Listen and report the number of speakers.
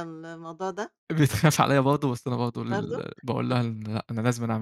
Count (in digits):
2